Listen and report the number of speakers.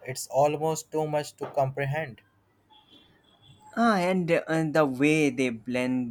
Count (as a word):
two